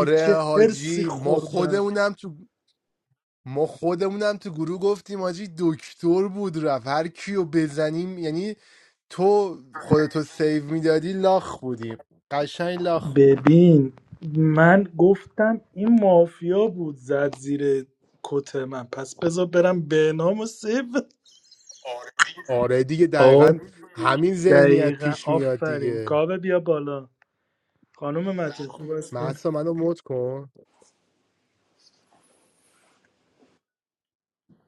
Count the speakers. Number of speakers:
2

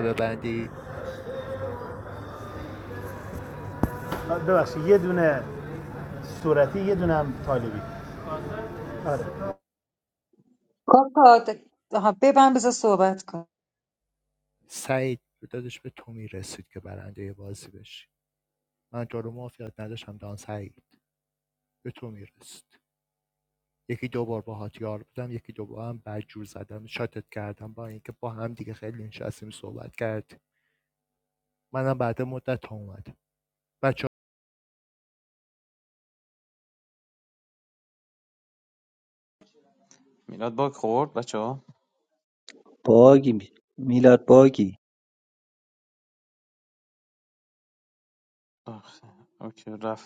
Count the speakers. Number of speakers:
5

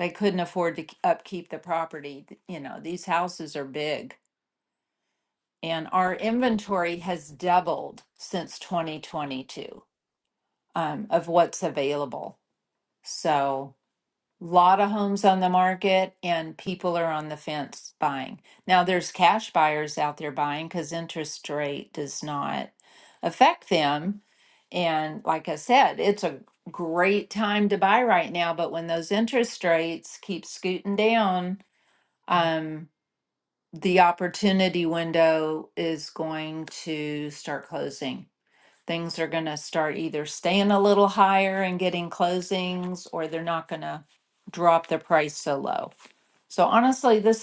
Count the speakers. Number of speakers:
1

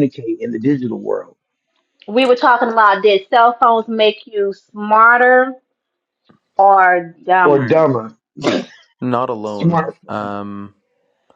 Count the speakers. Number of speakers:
3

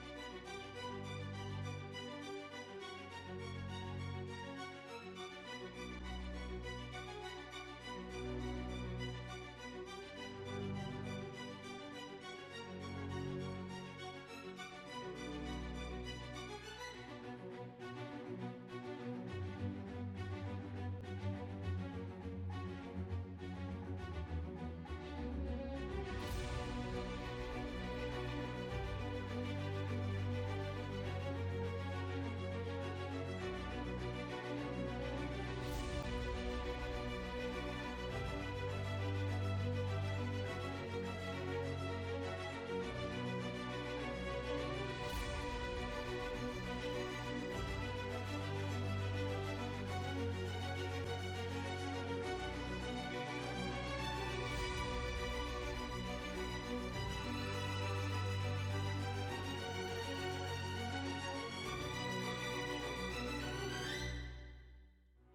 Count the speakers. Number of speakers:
0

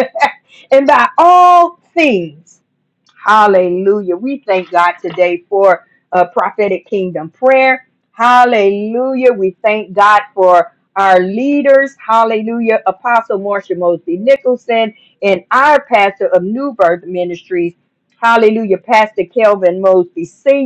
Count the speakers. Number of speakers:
1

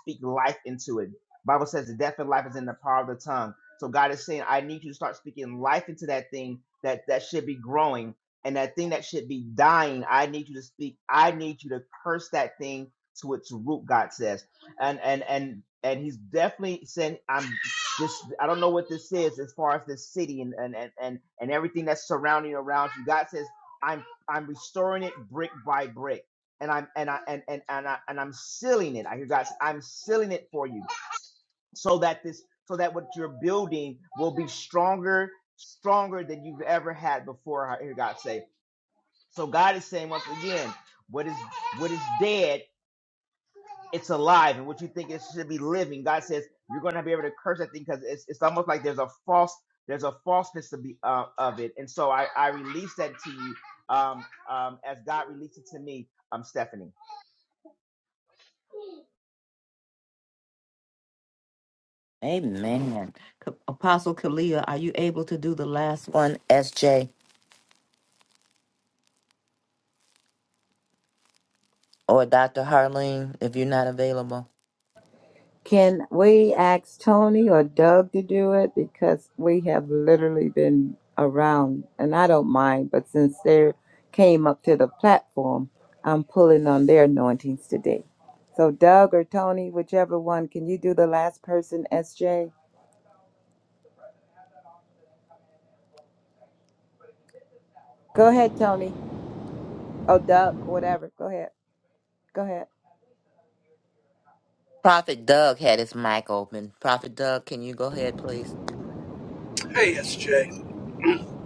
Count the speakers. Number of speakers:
4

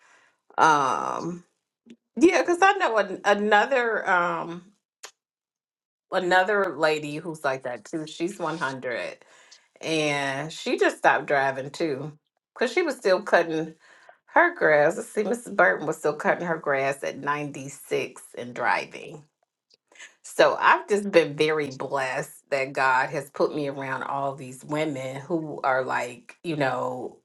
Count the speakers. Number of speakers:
1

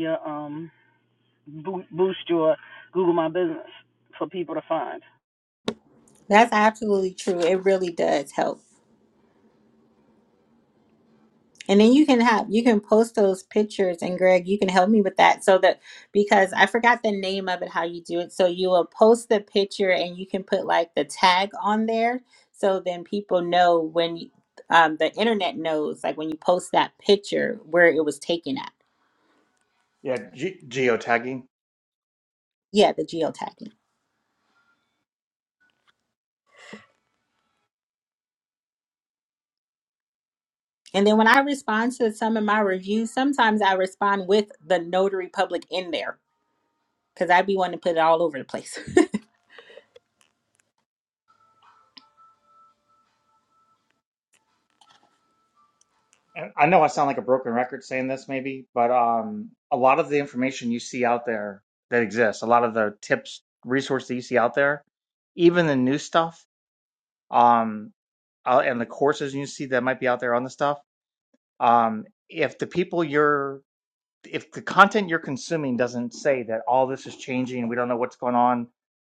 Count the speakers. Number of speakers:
3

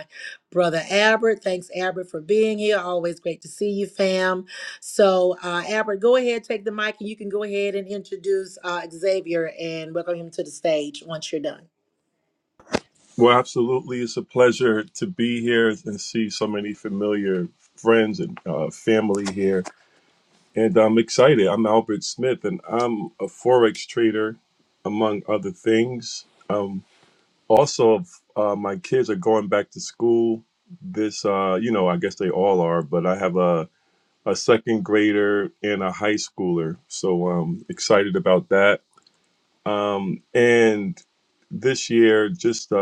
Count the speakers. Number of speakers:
2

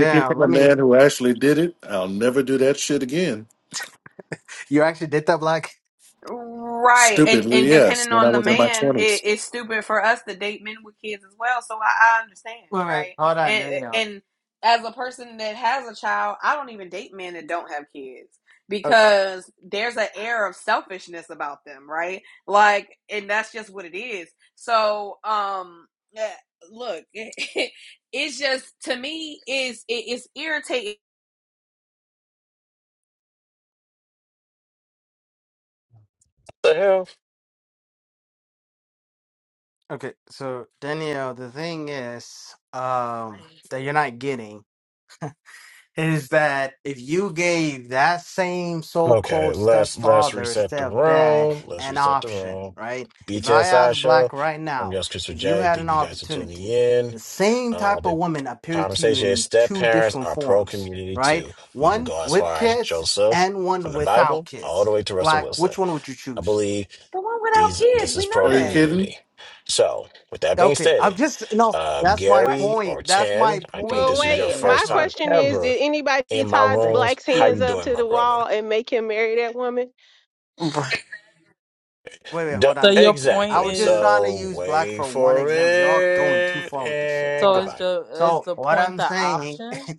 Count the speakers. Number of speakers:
6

